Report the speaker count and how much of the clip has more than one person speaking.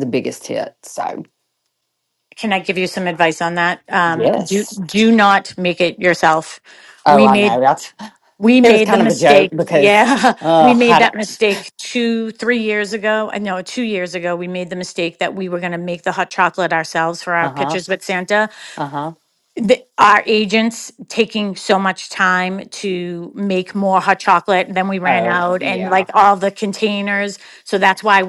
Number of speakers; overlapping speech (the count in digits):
2, about 16%